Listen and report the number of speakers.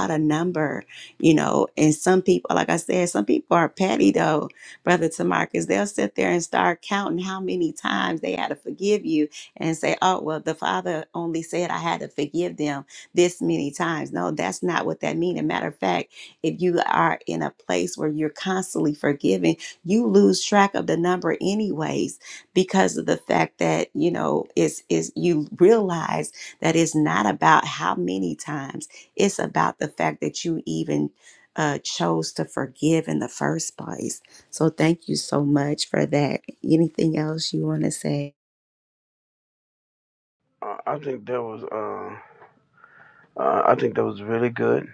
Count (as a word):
two